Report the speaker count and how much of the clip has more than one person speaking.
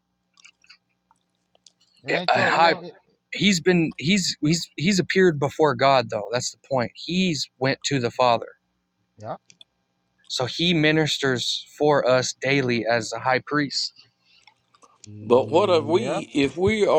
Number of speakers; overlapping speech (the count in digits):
3, about 9%